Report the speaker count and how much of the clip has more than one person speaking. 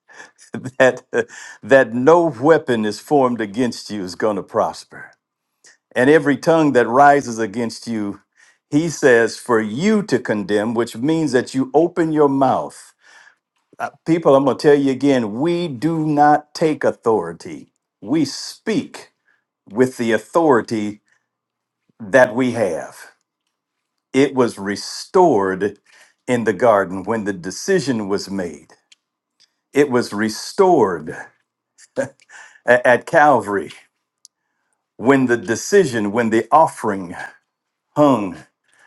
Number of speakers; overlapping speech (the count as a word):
one, no overlap